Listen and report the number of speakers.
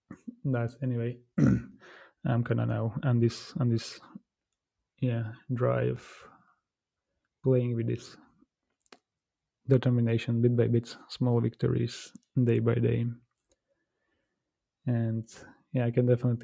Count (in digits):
1